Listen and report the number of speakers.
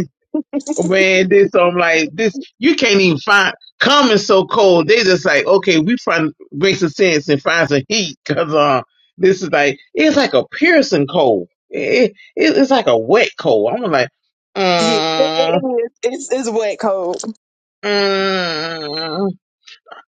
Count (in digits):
2